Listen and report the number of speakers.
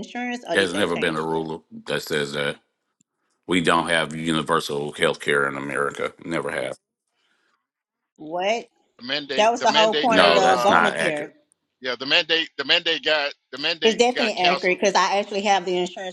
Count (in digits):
3